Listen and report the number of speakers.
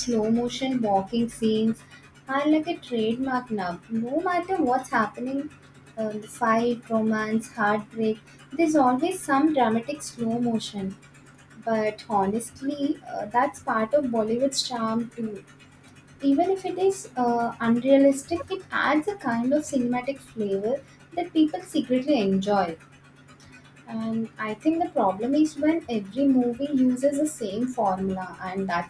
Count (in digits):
1